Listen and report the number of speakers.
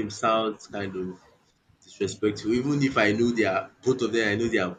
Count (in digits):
1